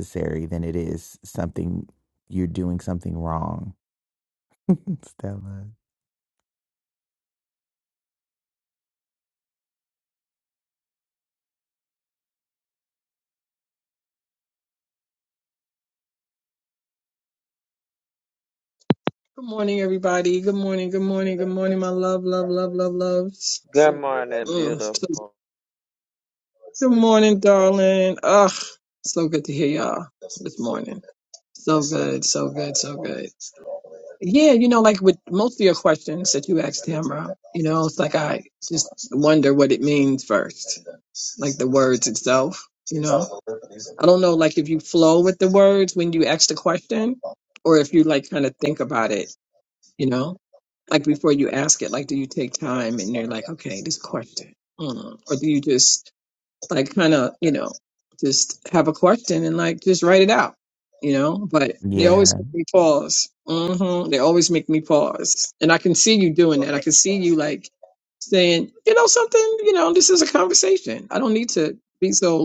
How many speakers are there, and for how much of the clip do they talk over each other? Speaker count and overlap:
3, about 1%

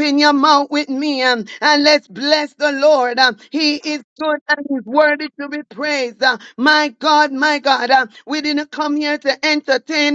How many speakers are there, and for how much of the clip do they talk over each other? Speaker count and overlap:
1, no overlap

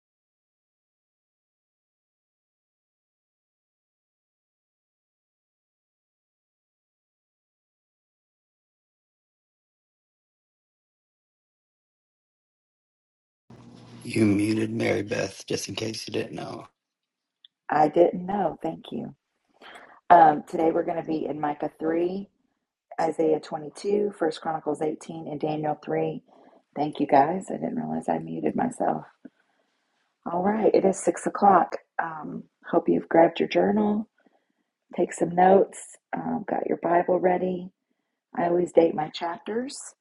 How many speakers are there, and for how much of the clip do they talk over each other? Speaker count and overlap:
2, no overlap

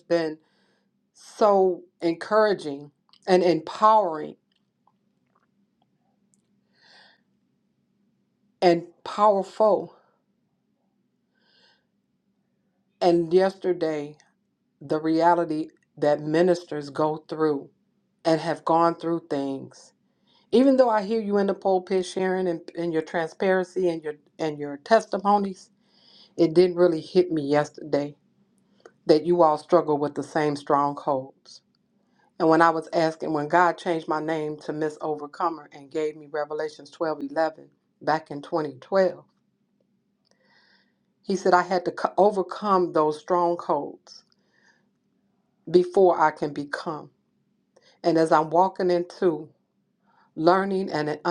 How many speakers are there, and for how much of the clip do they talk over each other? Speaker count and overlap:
1, no overlap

